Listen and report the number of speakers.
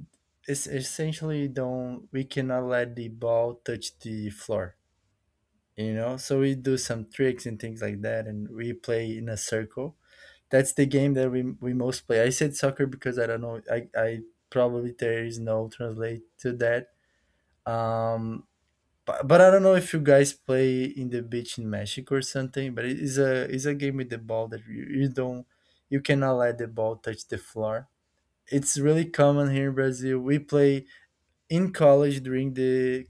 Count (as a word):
one